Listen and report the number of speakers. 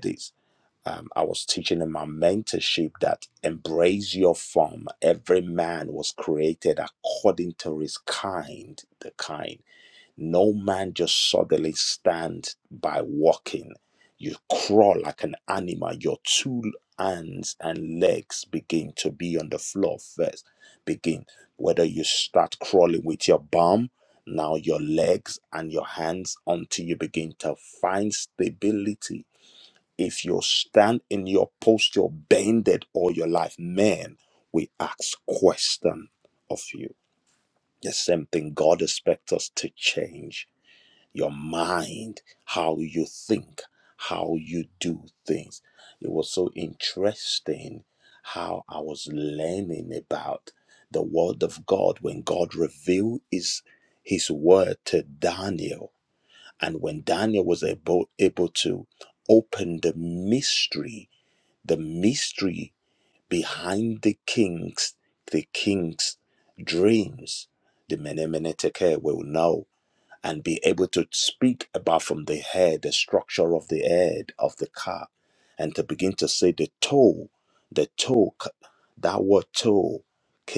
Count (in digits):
1